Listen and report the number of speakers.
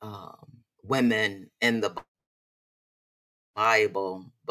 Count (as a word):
one